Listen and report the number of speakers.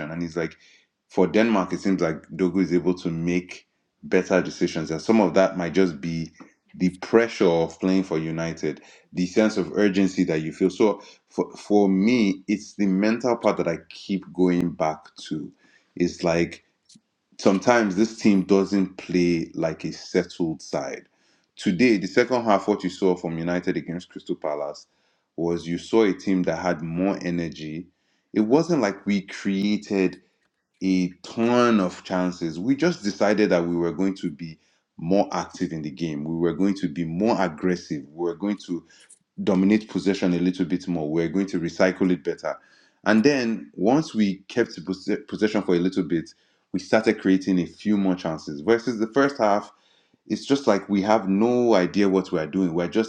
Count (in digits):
1